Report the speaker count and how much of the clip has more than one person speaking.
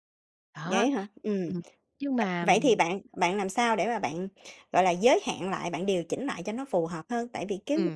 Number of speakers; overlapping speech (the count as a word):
two, about 9%